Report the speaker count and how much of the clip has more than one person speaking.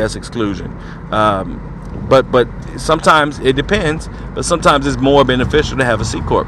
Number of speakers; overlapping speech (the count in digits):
1, no overlap